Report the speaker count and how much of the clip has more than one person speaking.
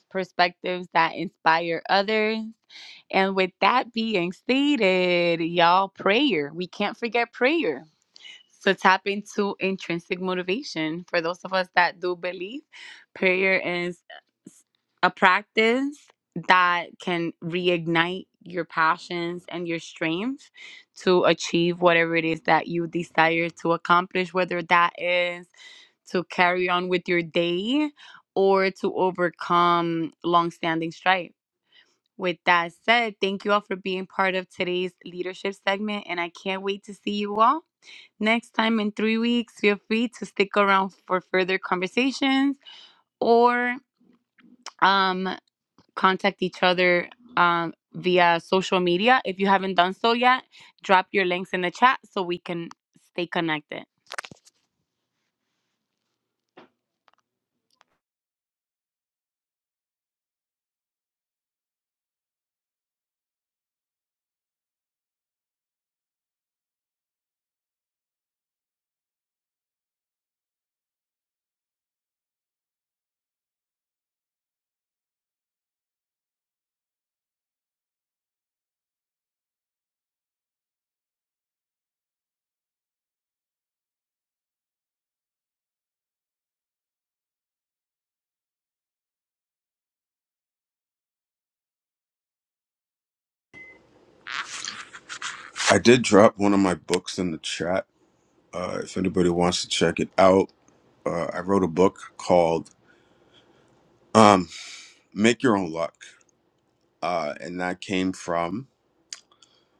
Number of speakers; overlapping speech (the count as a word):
two, no overlap